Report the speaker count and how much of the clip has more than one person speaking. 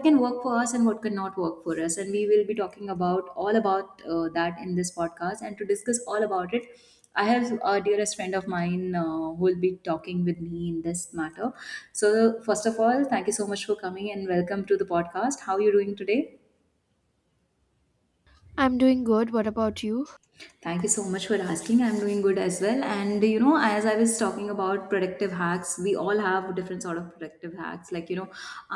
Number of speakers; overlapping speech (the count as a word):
two, no overlap